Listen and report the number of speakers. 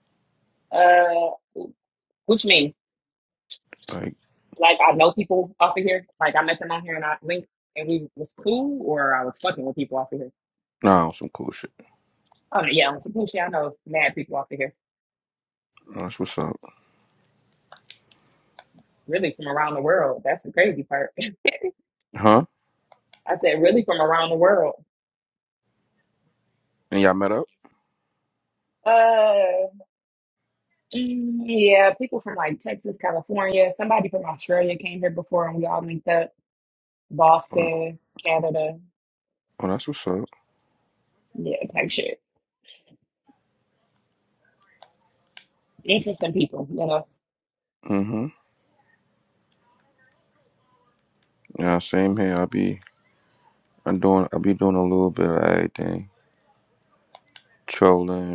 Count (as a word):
two